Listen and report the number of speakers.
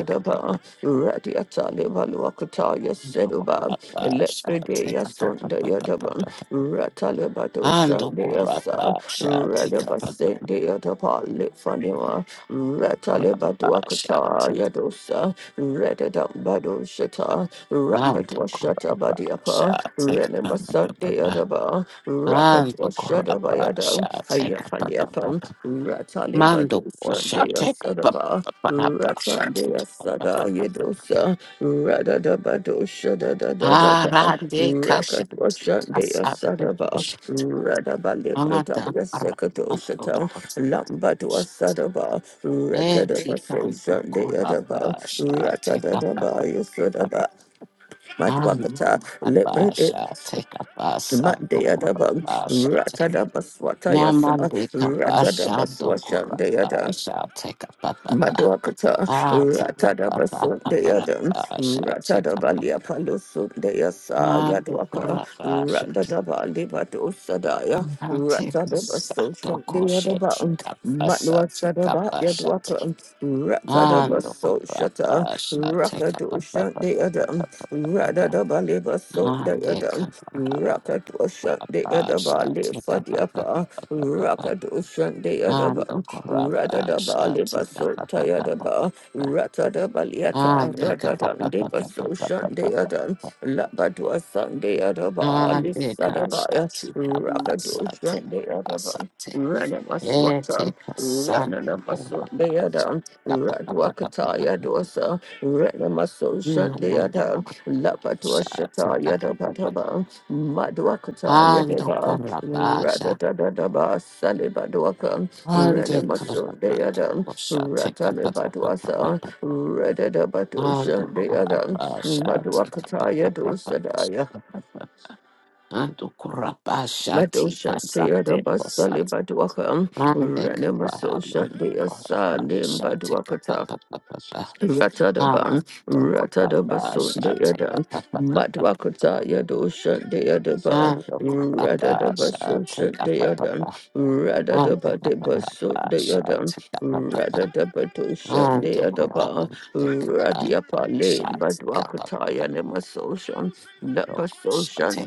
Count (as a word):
two